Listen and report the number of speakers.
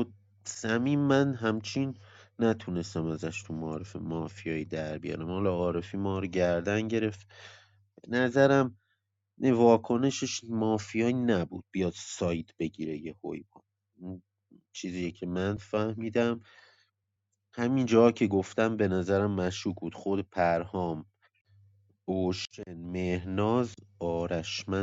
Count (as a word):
one